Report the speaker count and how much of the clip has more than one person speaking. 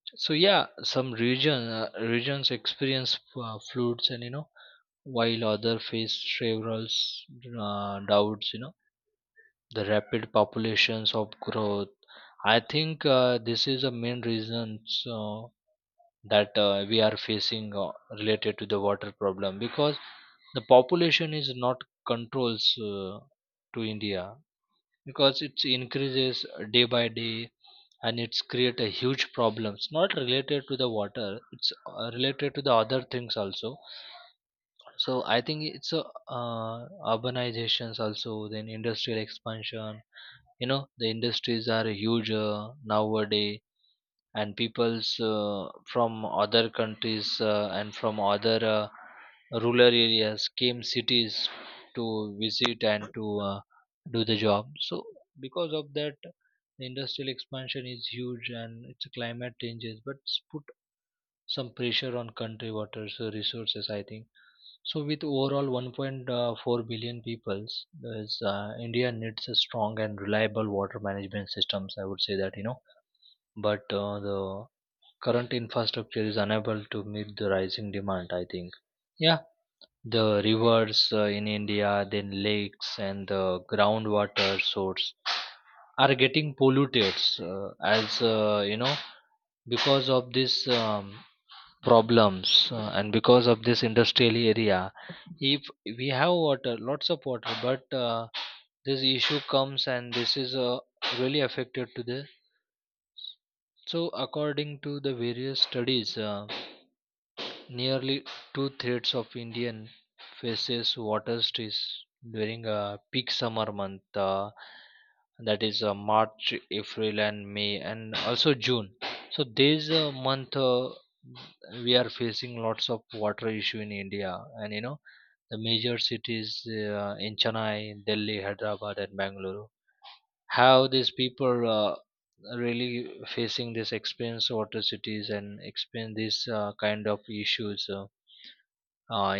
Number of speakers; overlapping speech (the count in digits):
1, no overlap